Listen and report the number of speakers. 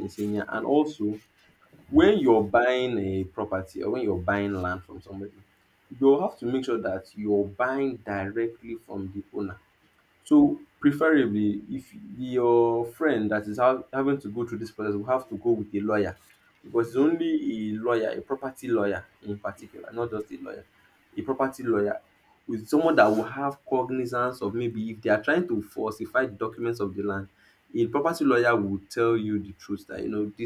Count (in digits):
1